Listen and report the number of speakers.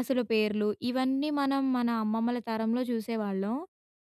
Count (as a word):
one